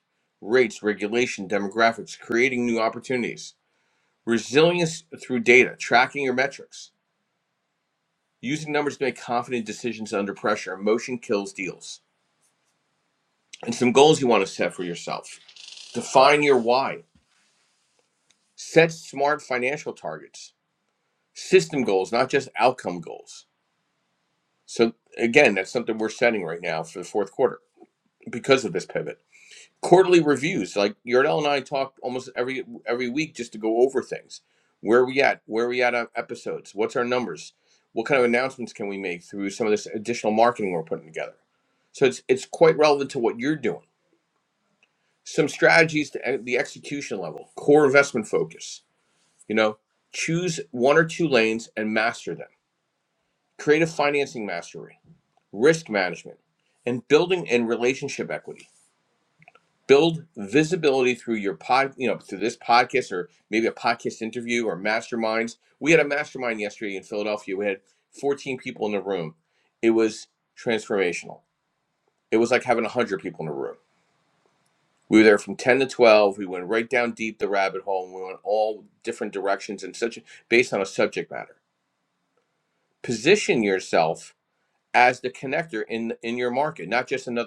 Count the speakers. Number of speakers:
one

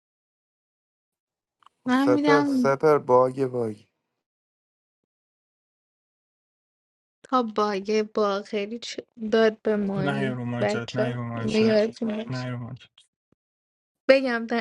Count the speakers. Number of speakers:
three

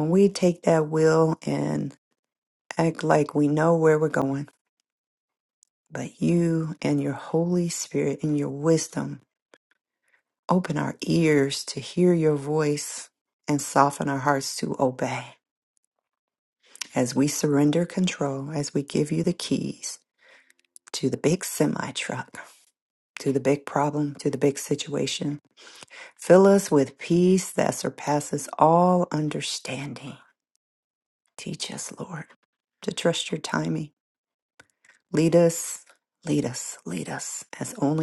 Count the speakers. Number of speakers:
one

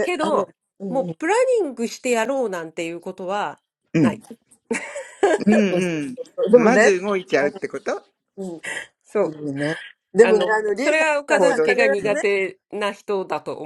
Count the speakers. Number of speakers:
three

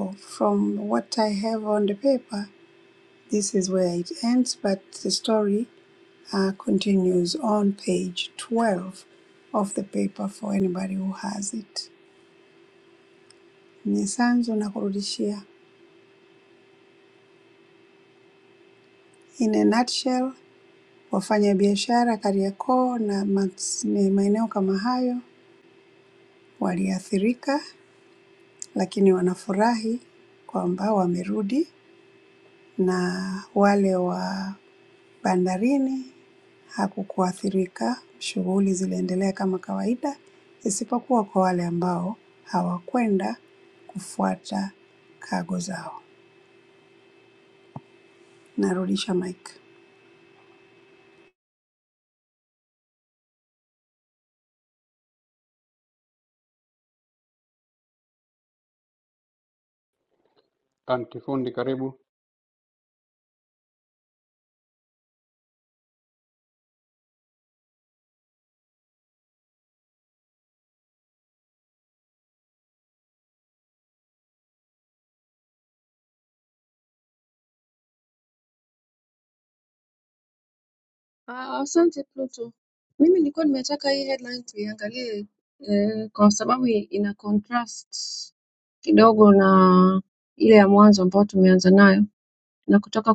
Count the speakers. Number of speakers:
three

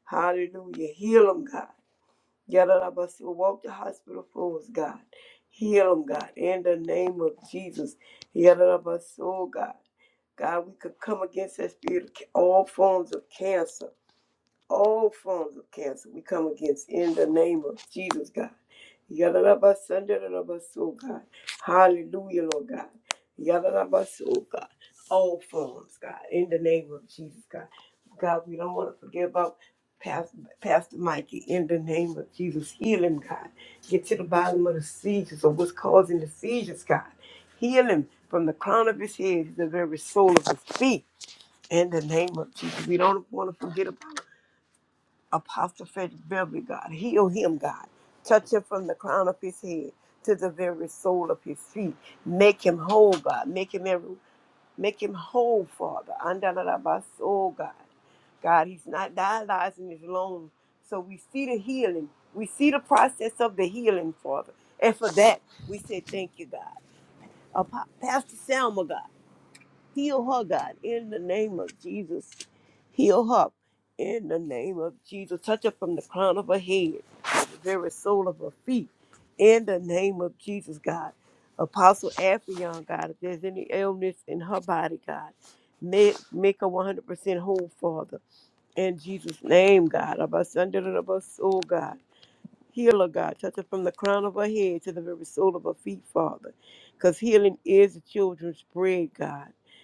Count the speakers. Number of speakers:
one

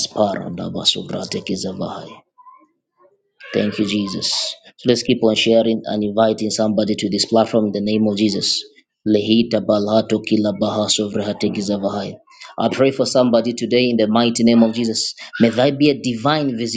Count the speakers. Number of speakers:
one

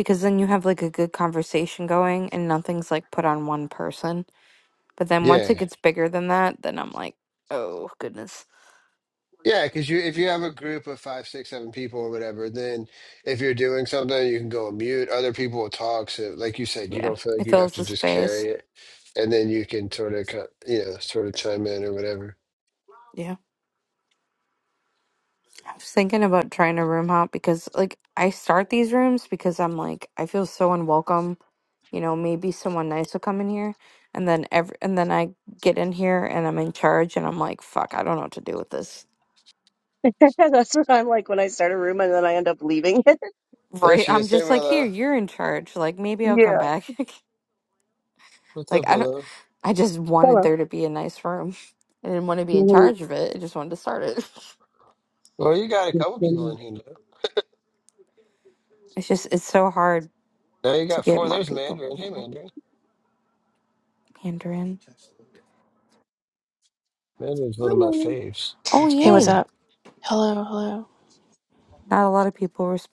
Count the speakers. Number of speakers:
four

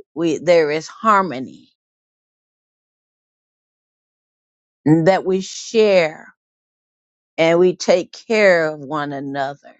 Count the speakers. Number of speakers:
one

